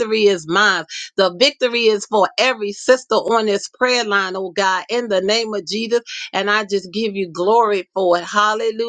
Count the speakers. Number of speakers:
1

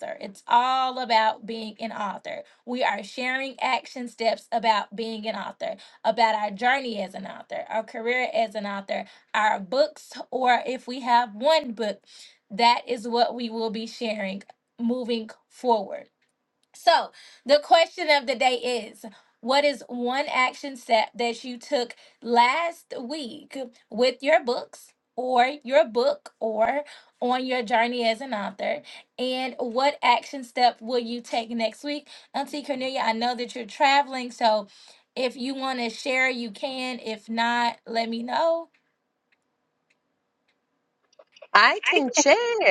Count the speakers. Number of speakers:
2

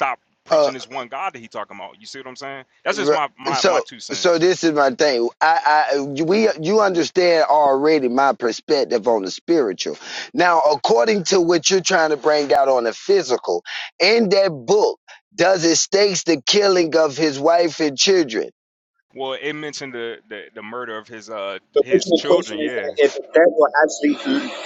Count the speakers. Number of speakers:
3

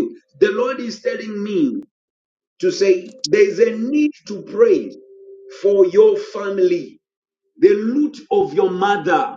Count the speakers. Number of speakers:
1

